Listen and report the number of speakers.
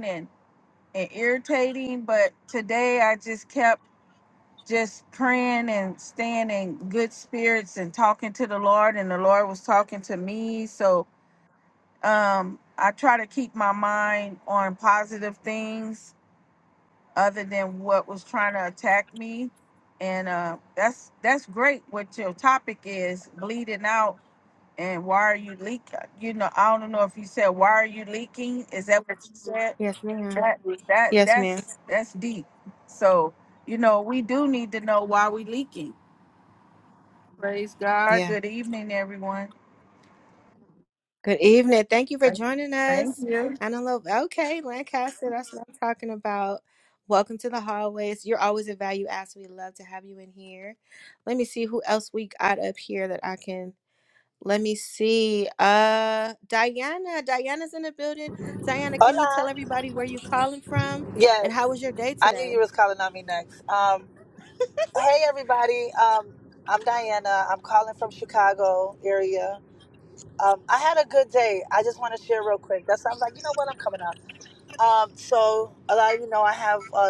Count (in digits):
3